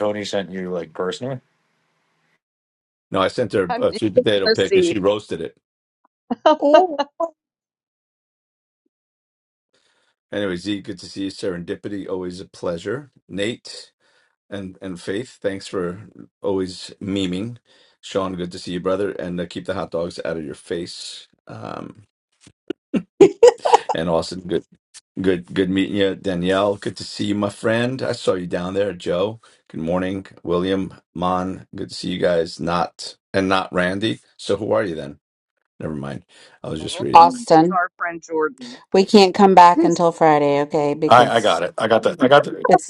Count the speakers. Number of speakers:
four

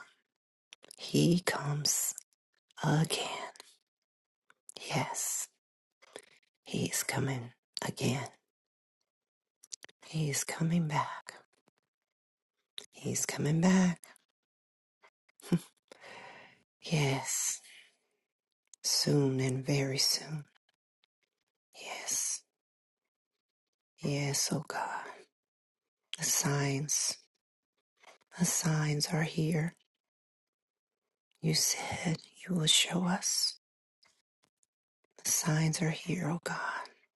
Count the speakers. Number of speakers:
one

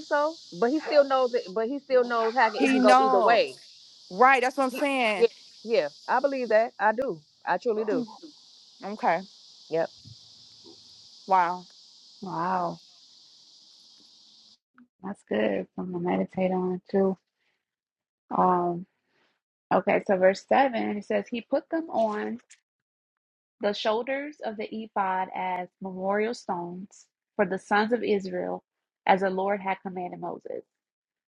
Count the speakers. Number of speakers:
three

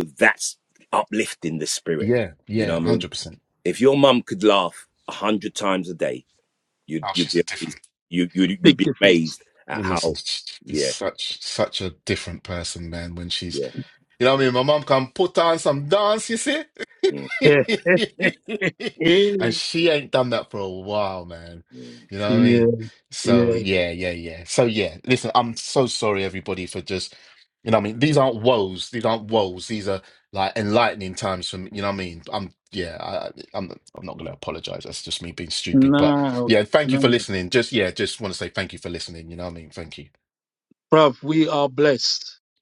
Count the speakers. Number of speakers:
three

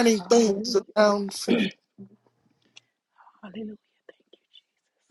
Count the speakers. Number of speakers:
two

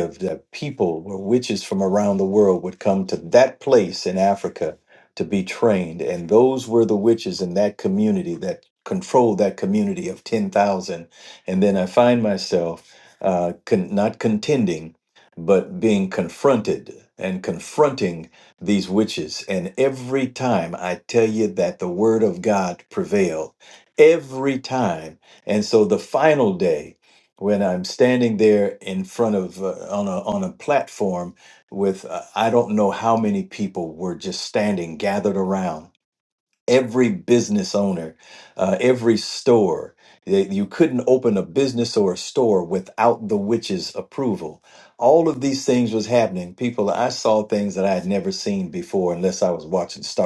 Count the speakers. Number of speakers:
one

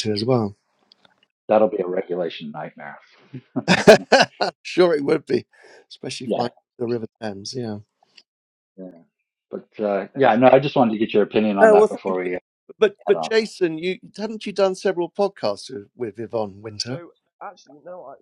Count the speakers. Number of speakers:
three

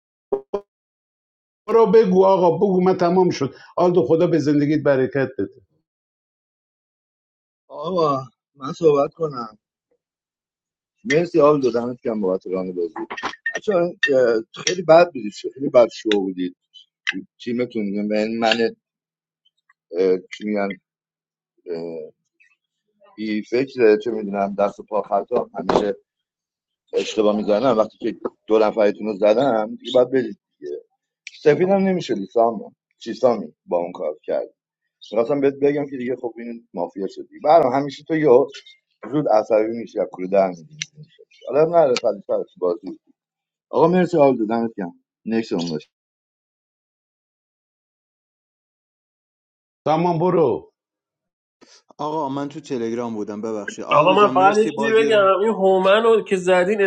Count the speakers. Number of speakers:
four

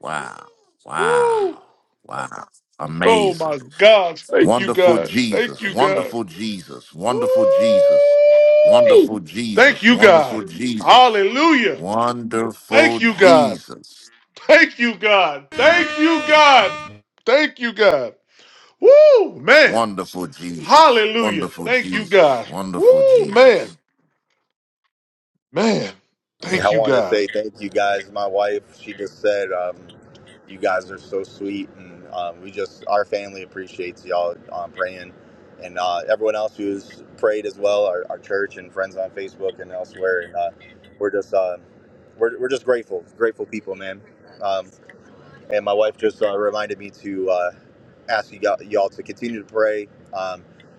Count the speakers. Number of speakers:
three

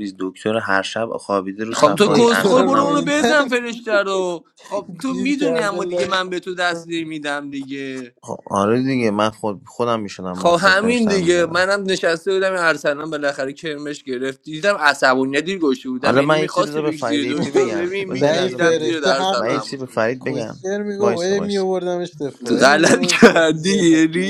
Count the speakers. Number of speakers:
three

